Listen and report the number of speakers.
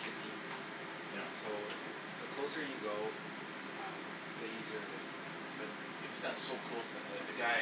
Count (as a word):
two